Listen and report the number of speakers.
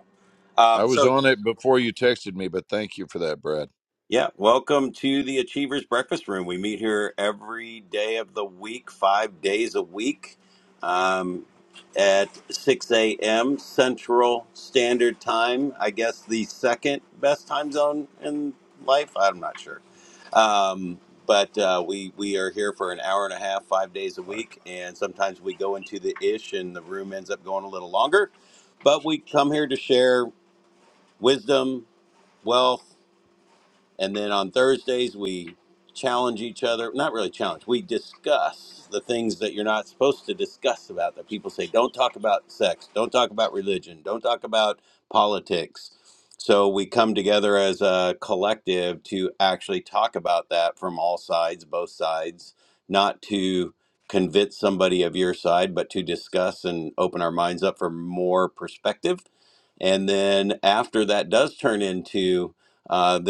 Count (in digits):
2